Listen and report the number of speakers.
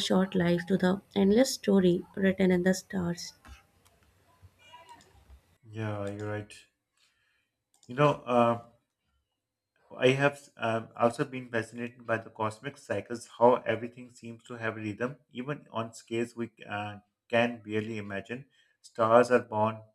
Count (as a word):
two